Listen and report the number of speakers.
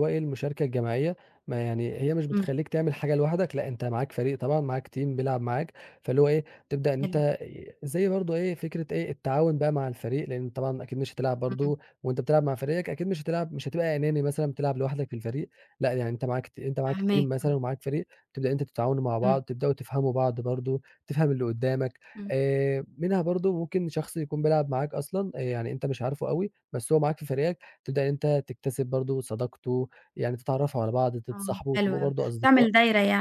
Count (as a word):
two